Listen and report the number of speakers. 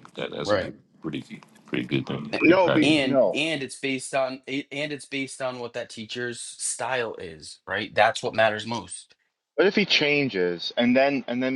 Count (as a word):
three